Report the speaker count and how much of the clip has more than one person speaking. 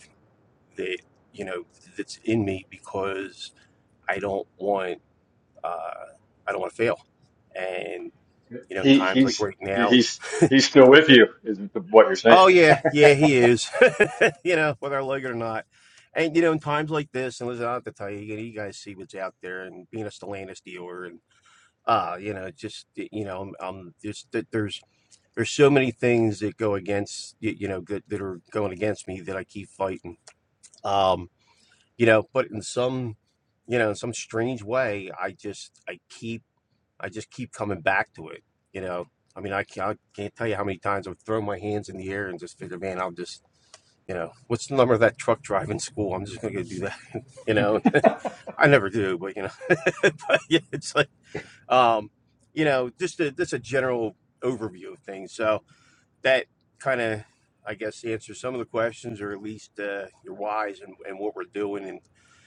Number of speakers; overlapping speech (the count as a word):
two, about 2%